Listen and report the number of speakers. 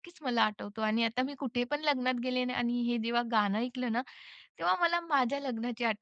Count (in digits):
1